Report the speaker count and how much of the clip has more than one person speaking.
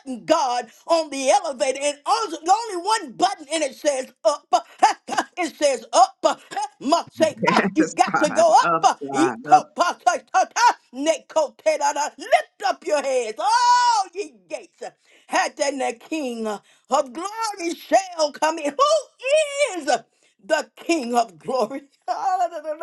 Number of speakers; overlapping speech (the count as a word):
two, about 5%